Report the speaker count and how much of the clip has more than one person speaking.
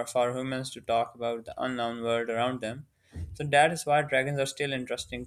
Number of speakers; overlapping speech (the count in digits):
1, no overlap